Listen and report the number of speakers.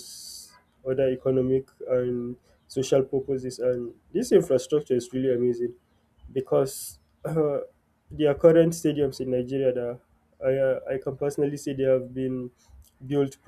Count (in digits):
1